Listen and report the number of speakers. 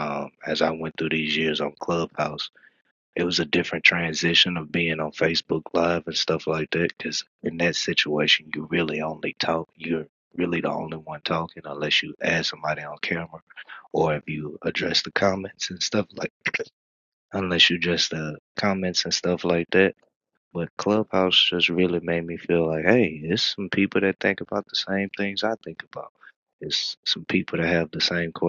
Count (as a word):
one